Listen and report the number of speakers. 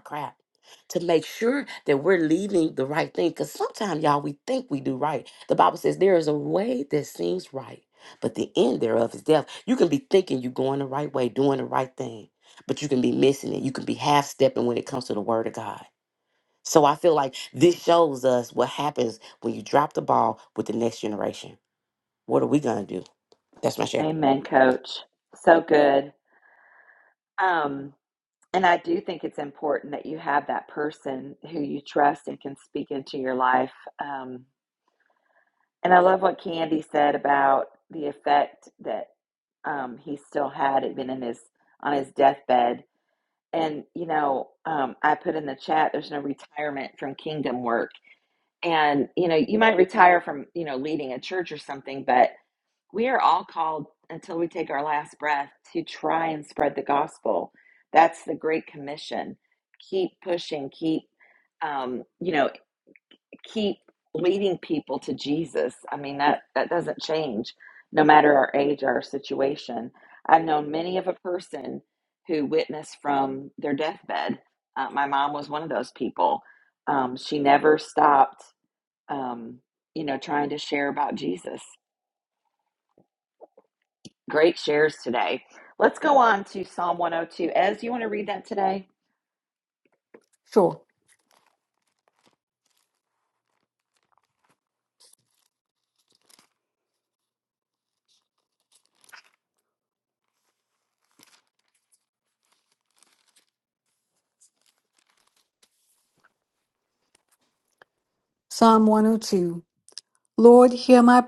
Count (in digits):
3